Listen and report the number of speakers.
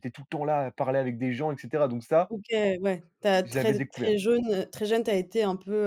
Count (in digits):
2